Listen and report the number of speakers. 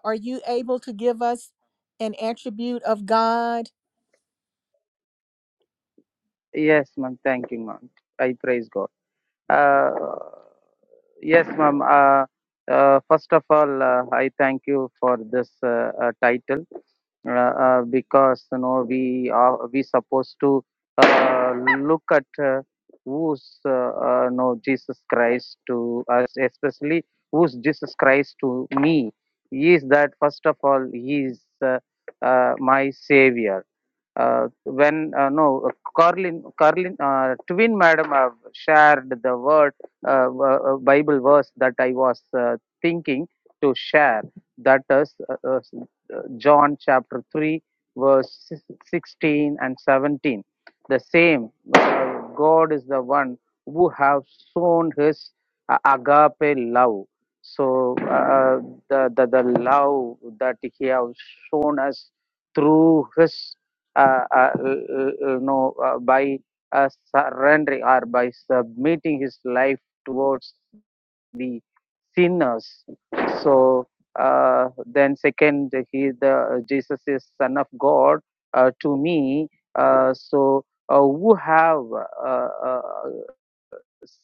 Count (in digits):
2